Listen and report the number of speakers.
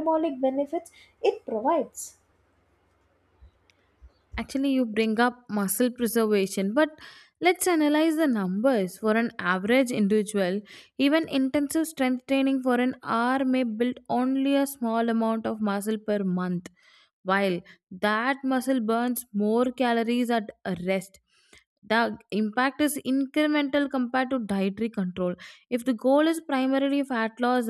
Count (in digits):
2